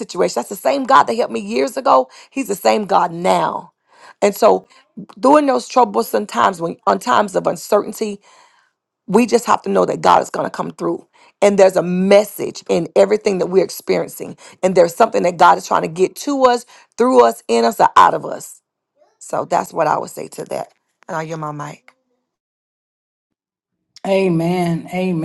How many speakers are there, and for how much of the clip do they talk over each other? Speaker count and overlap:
2, no overlap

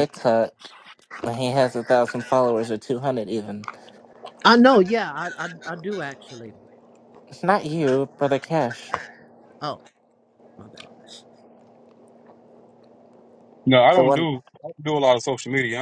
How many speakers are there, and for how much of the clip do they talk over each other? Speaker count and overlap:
3, about 2%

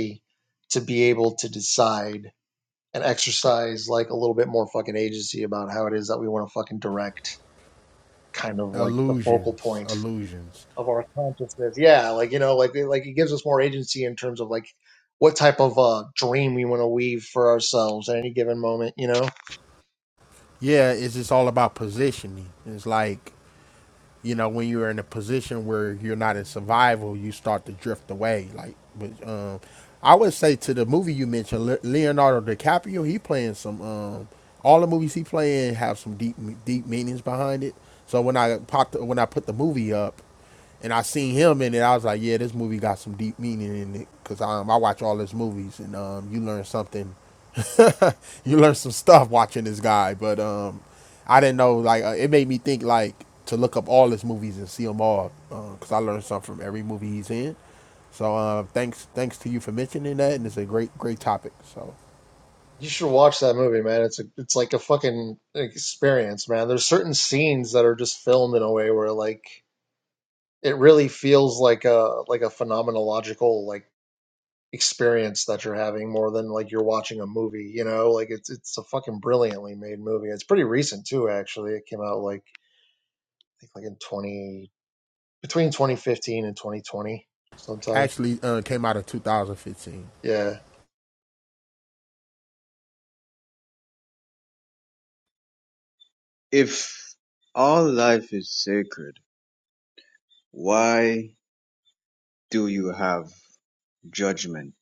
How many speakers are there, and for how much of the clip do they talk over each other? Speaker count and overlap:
3, about 1%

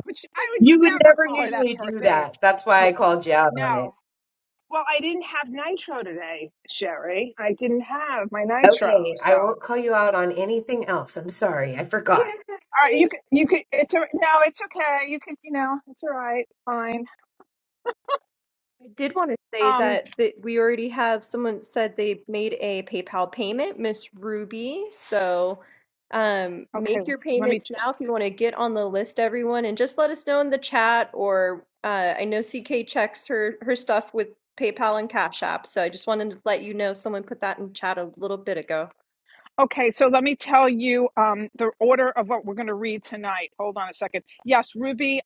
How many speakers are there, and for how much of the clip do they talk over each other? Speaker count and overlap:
3, about 9%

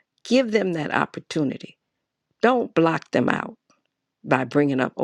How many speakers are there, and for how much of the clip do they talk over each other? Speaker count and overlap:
1, no overlap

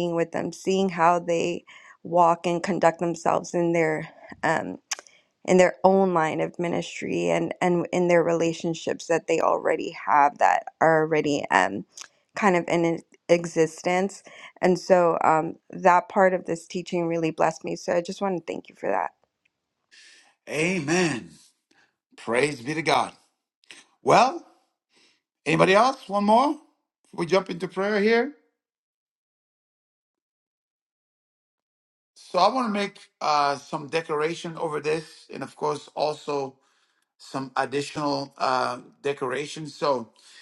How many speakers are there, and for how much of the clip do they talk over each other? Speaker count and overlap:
2, no overlap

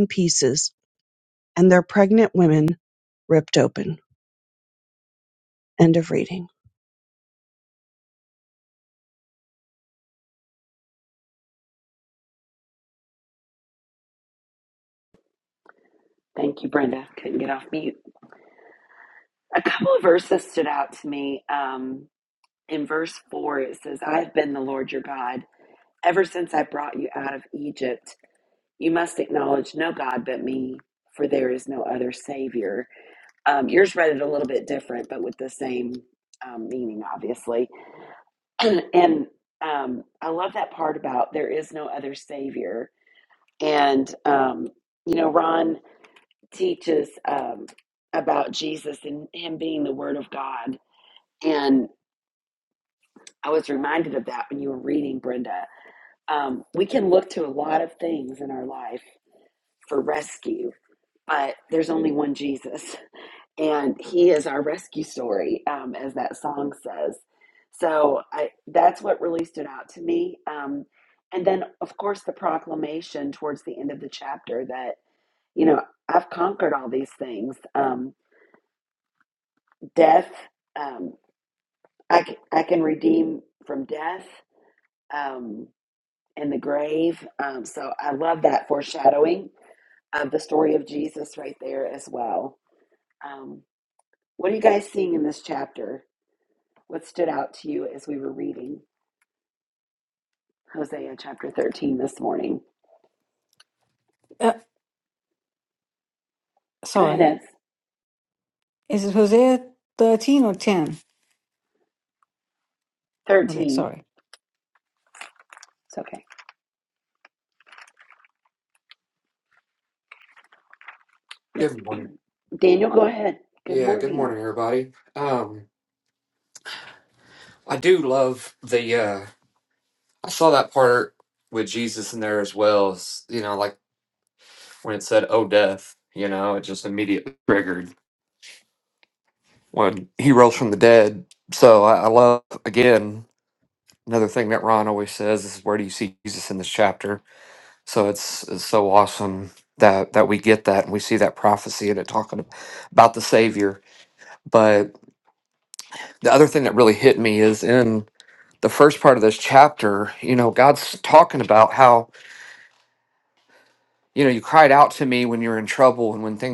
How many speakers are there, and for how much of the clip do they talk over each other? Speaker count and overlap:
4, about 1%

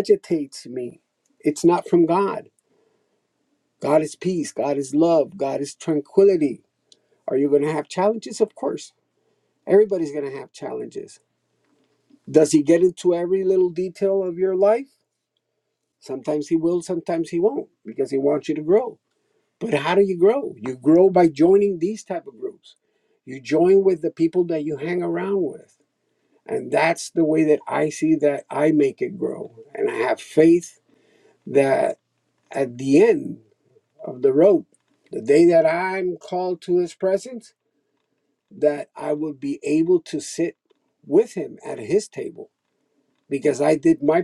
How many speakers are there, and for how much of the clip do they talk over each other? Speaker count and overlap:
1, no overlap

